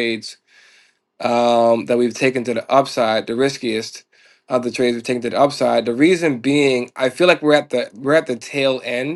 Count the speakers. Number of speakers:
1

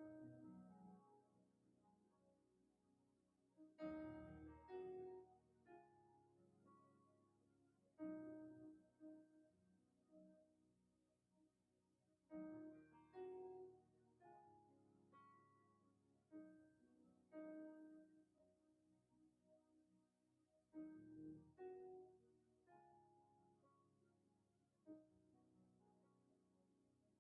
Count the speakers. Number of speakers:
0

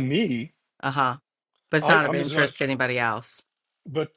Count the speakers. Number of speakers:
2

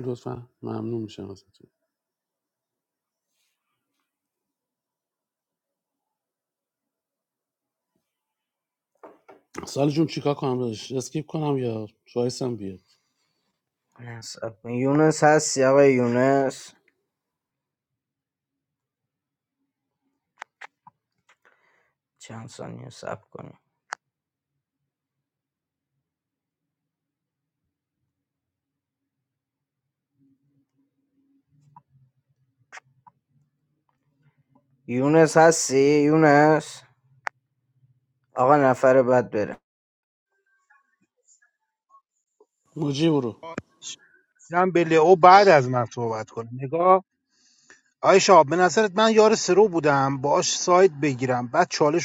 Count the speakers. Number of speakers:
3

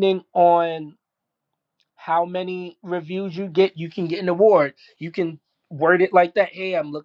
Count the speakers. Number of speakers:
1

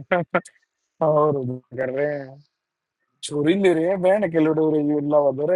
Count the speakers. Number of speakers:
1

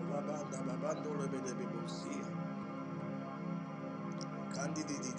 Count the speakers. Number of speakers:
0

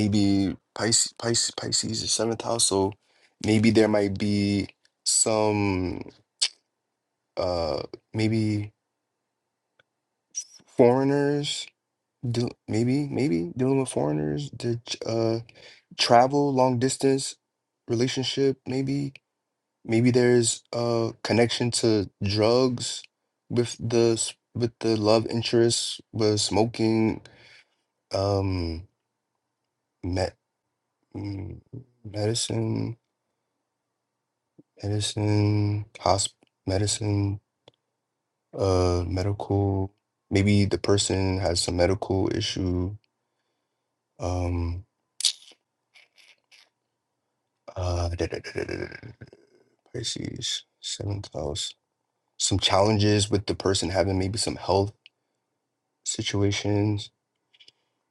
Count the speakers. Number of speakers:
1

